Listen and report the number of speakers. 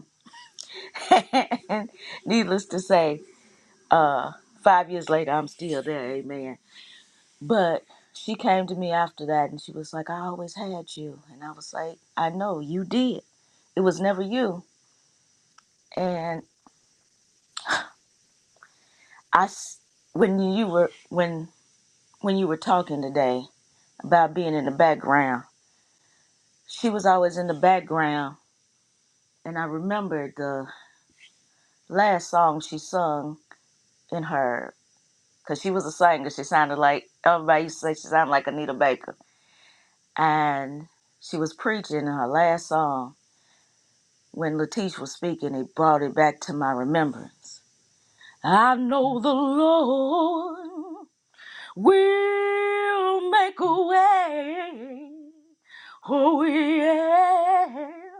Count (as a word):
one